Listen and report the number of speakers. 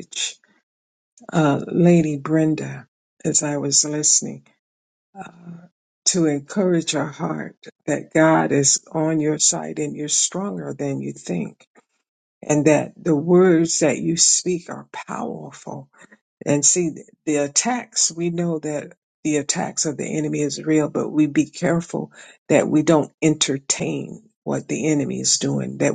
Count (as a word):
one